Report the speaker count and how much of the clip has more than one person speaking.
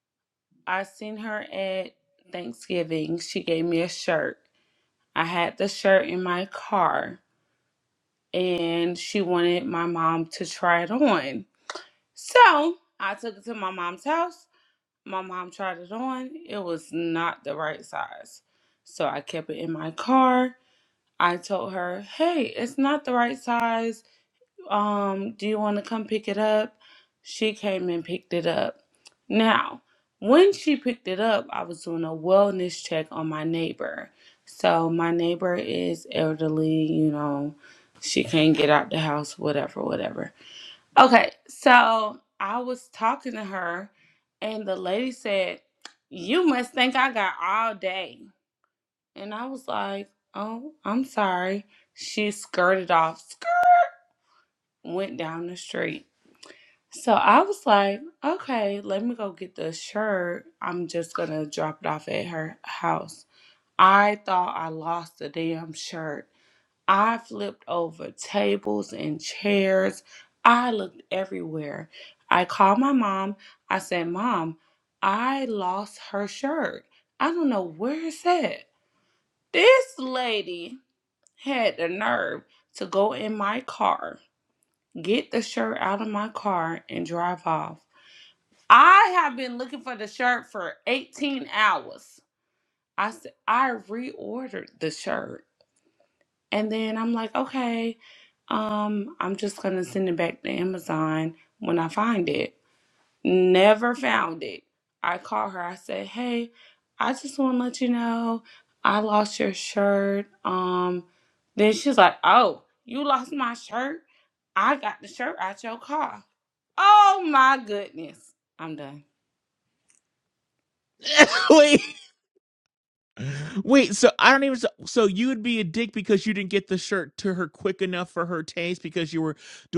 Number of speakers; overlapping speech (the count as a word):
two, no overlap